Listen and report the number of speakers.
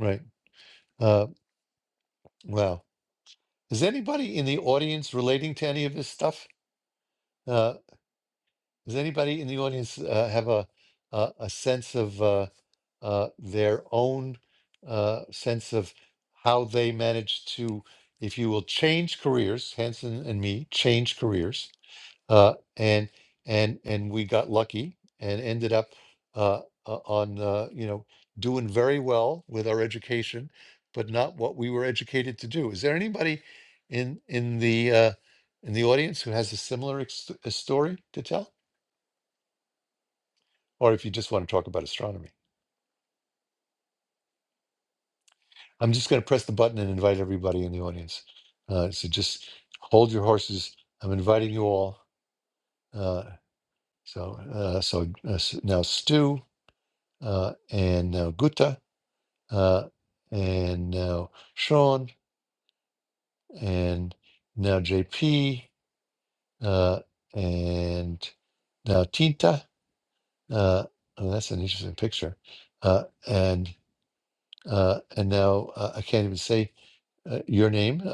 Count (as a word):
one